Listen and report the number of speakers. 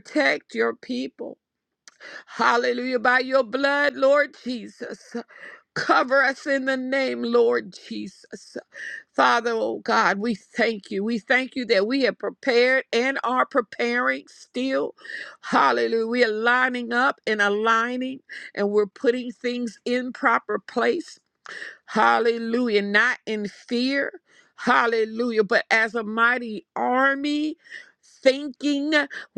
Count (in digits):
1